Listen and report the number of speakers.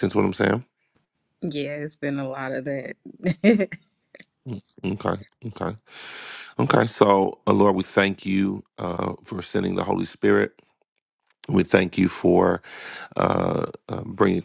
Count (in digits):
2